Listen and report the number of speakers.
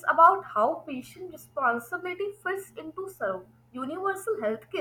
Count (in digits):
1